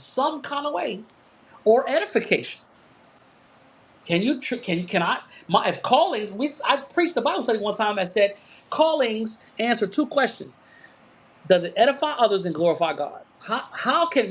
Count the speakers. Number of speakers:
1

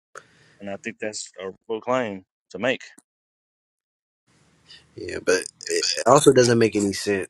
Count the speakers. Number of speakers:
2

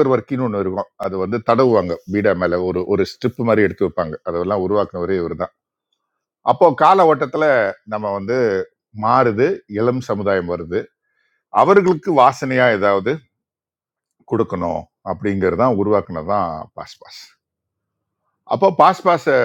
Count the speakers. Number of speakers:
1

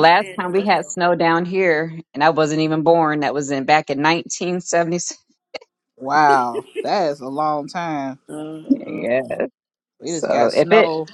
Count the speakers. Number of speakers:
3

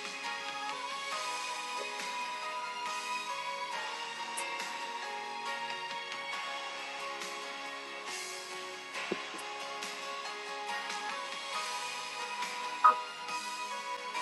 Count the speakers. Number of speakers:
0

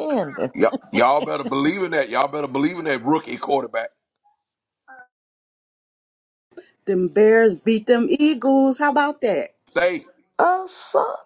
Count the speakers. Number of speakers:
3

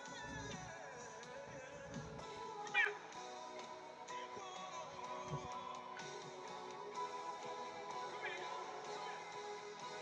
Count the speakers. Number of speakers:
0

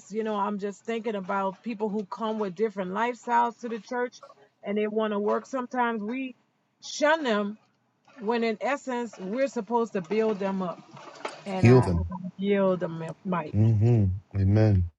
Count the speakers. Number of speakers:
2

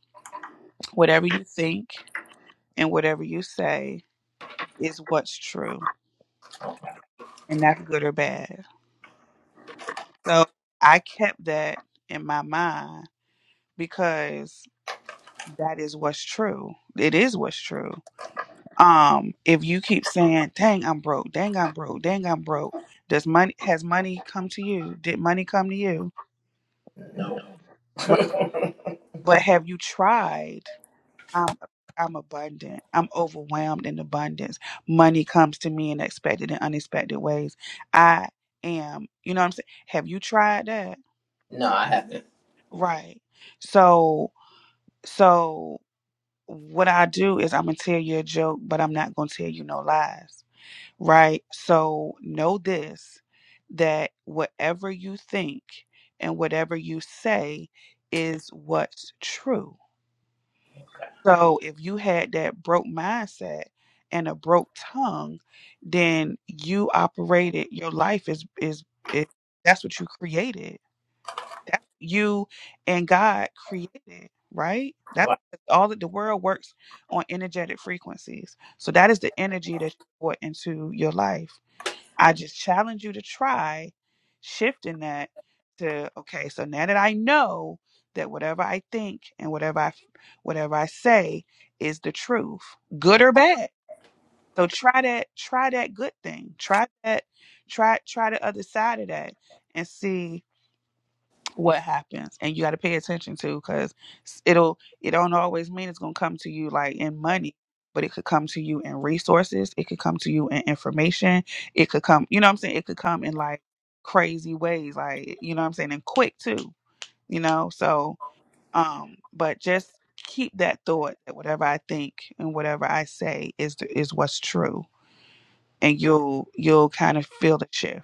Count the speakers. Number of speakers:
2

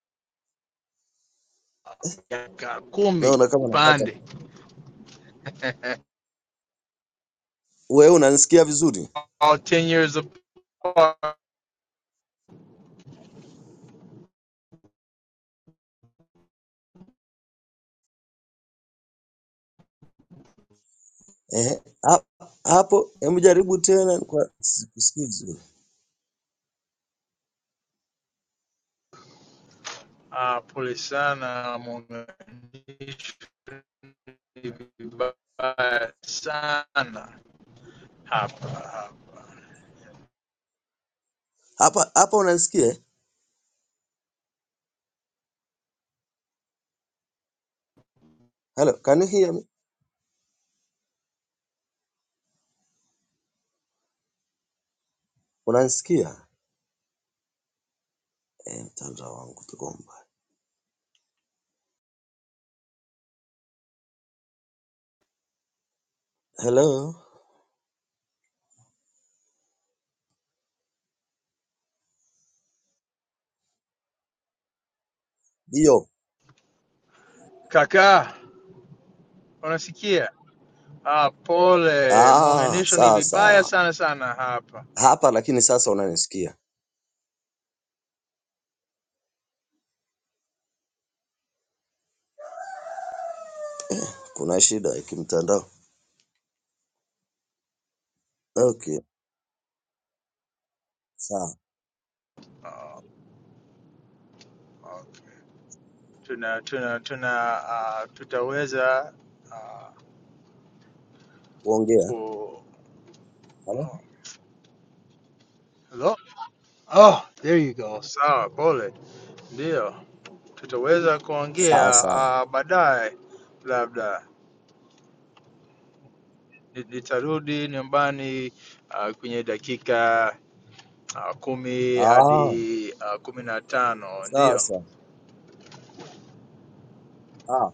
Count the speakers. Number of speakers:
2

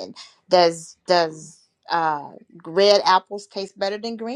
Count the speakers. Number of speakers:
1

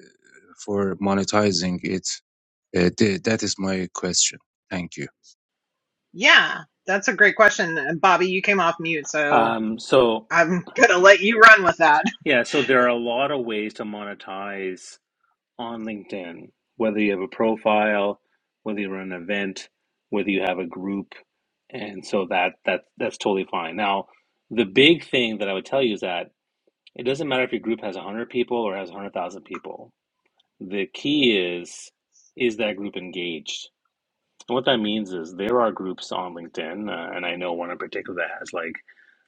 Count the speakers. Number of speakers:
3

